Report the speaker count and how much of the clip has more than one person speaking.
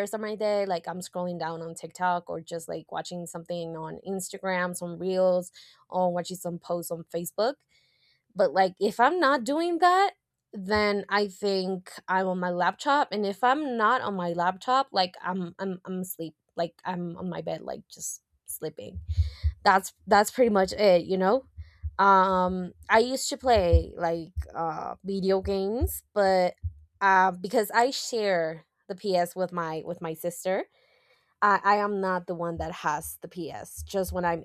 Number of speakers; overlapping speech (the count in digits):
1, no overlap